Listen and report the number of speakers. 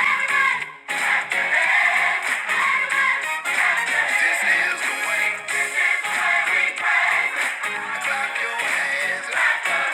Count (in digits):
0